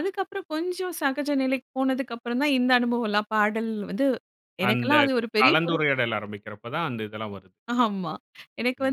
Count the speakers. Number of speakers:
two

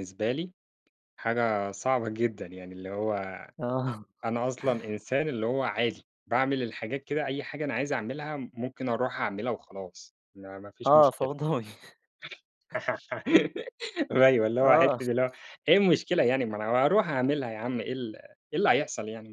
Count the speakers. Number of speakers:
two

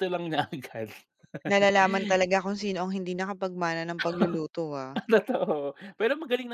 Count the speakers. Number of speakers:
two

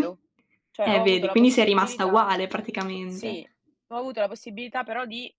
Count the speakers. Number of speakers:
two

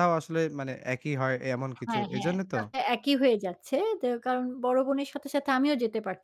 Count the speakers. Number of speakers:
two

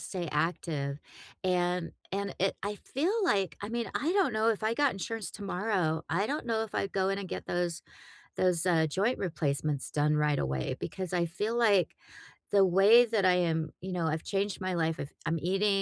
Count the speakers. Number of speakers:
one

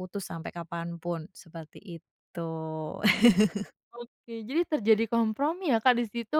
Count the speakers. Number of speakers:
two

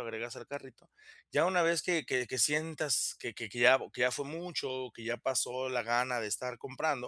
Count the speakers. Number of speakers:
one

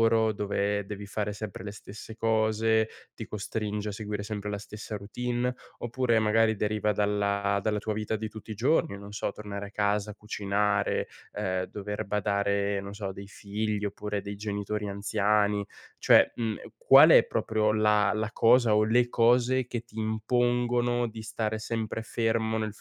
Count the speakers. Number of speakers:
one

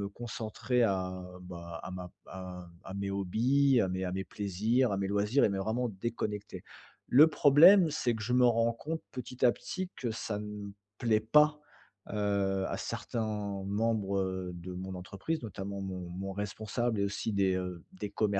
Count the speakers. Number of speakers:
one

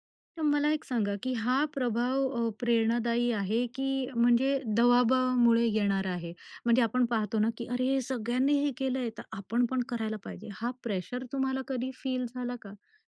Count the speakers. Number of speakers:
one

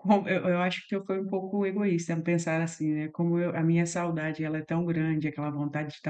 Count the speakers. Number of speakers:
one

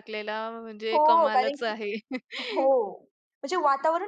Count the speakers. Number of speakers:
two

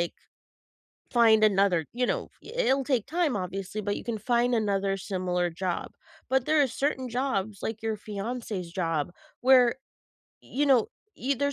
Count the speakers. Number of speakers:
one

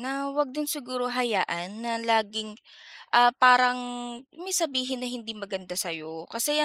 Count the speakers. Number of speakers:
one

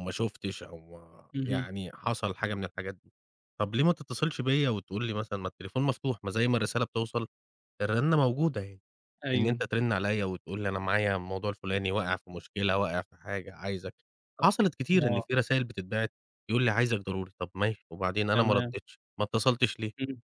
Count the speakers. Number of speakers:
two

